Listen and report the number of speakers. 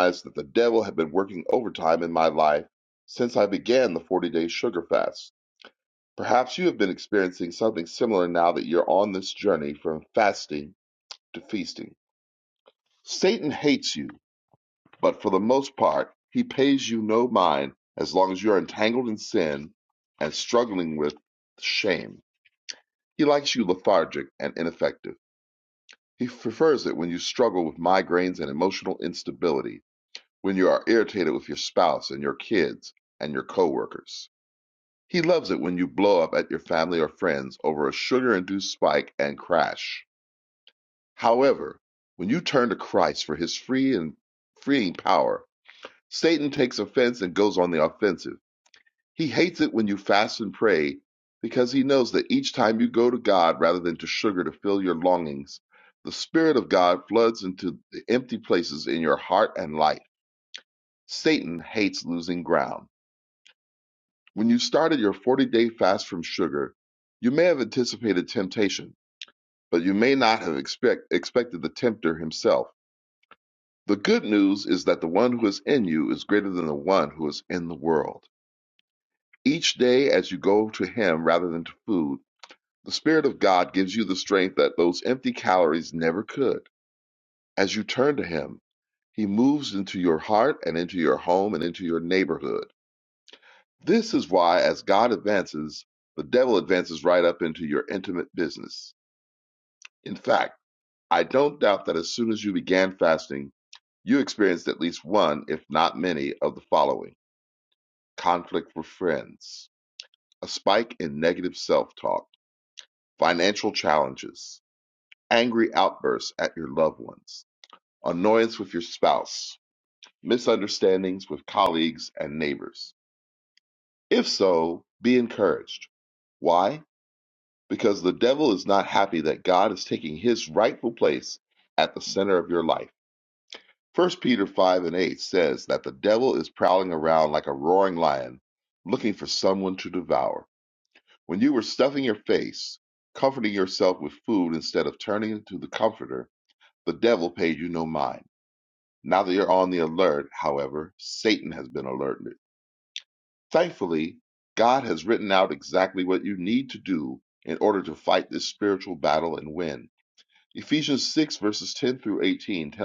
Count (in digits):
1